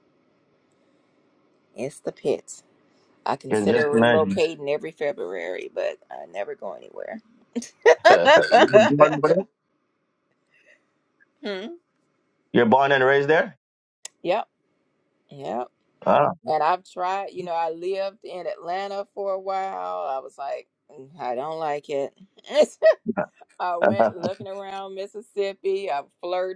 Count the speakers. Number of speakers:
two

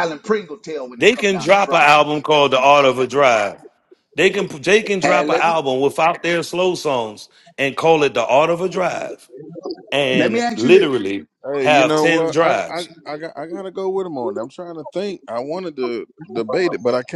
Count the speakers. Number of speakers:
three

